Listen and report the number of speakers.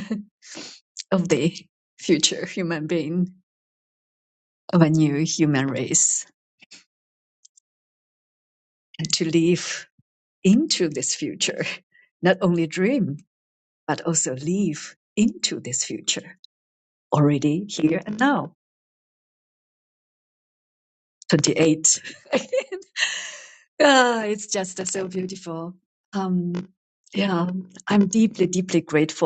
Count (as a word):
one